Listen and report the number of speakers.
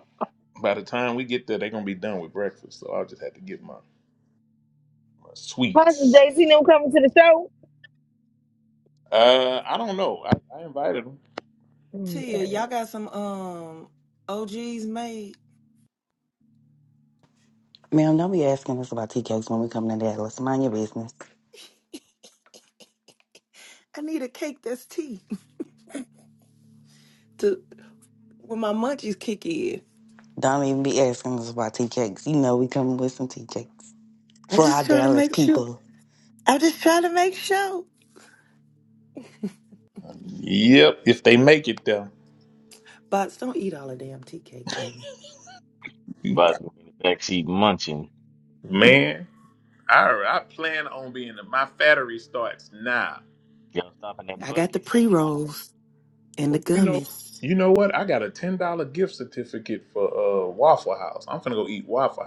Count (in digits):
5